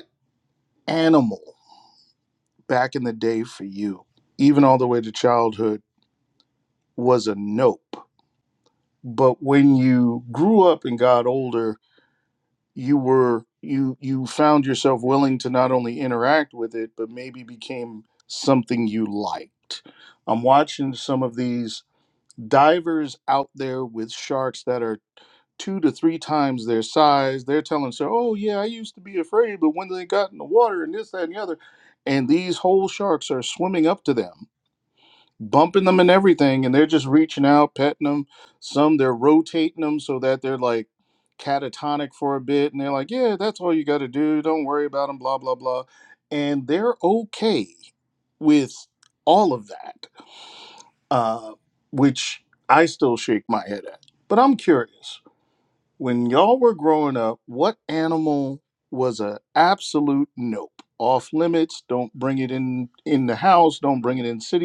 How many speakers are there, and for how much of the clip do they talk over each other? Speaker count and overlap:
one, no overlap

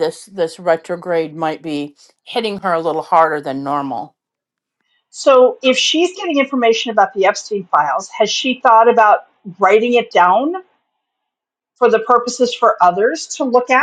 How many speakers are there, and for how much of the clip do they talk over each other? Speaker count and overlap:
two, no overlap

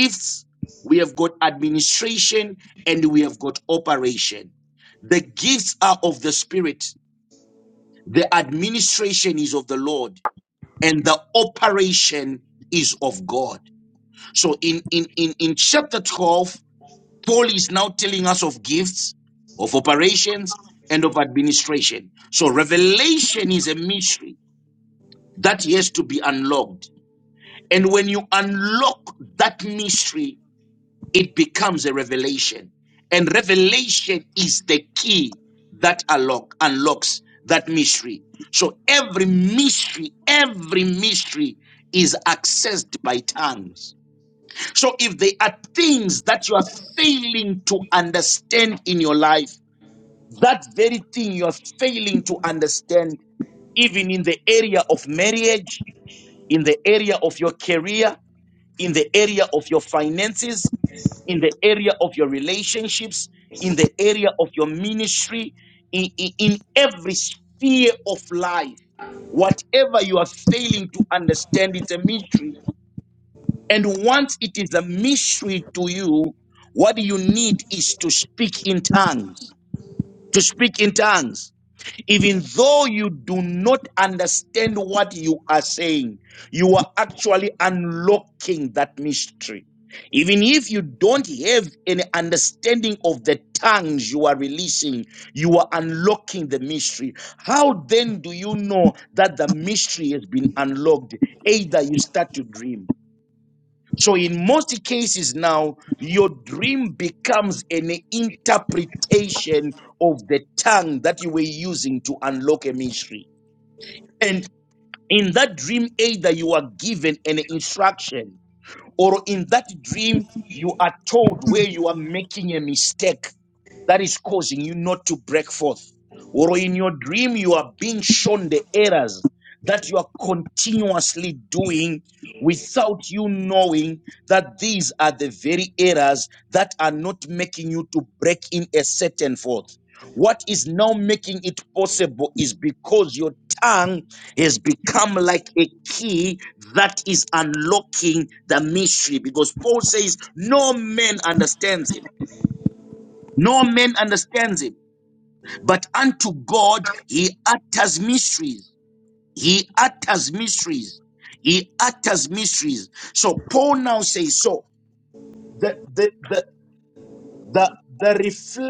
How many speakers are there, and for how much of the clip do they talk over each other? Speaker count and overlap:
one, no overlap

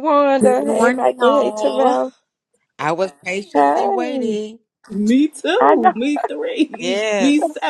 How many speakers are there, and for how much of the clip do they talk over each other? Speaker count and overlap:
three, about 43%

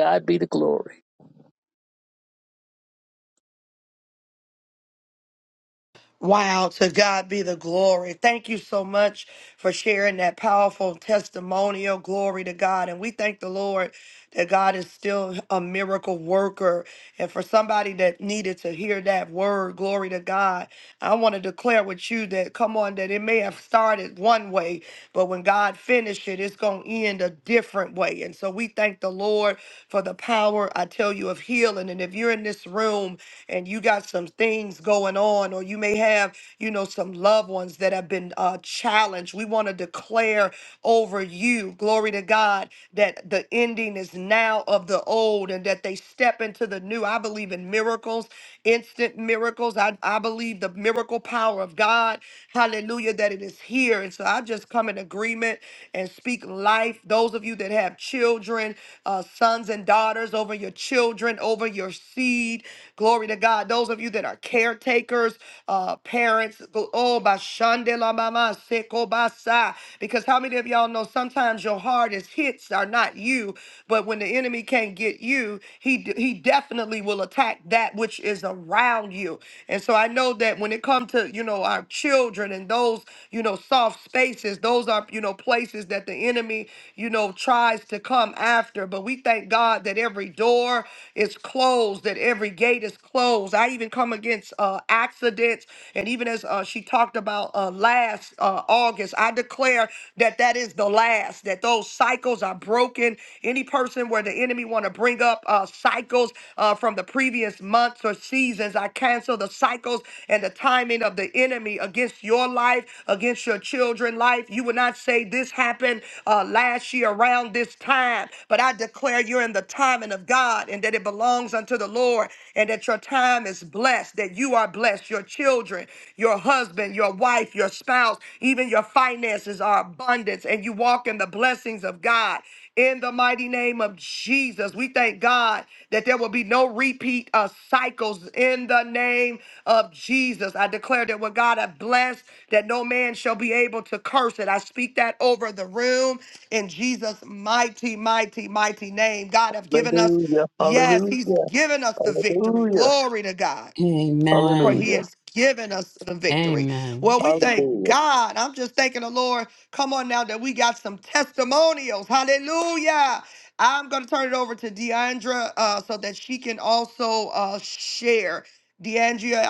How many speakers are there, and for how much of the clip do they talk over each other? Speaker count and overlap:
three, about 3%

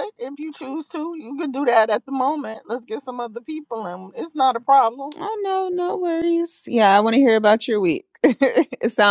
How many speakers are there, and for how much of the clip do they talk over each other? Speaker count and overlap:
two, under 1%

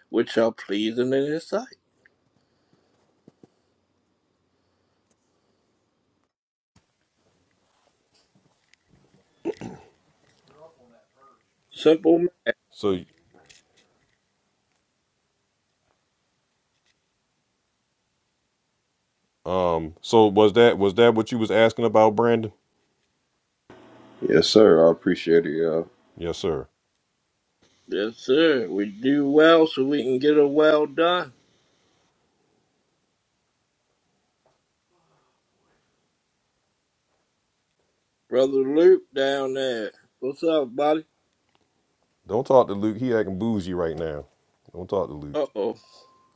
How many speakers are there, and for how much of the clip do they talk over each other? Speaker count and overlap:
three, no overlap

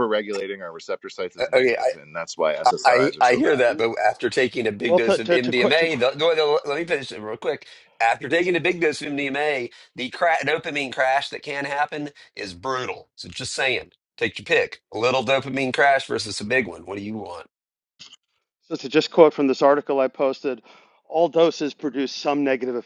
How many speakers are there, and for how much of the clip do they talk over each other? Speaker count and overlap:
three, about 10%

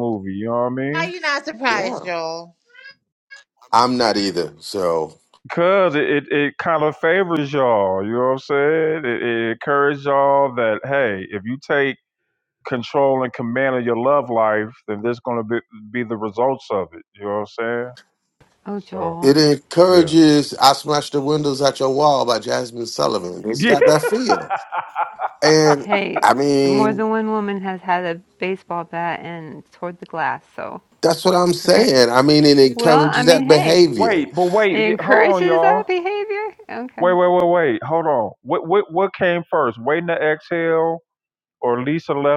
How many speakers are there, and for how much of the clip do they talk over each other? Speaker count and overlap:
four, about 10%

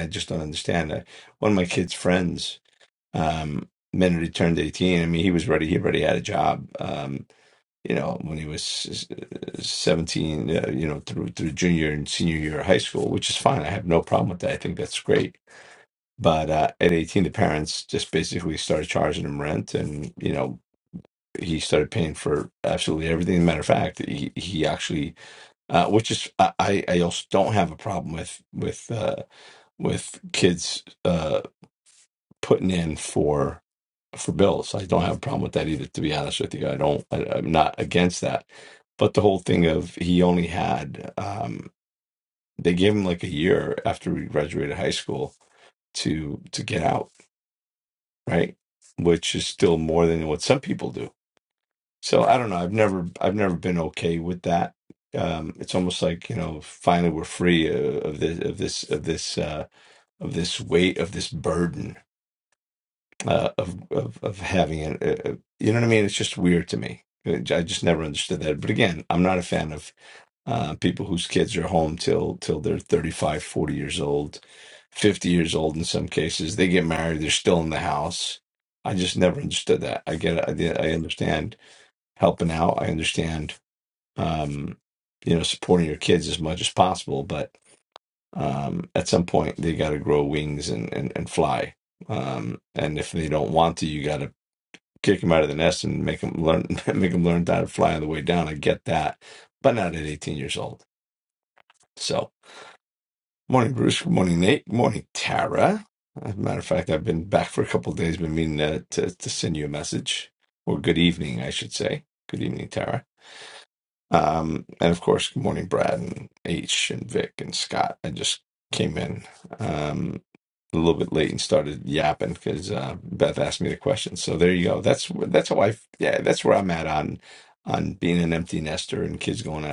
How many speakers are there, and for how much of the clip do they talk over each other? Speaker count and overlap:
one, no overlap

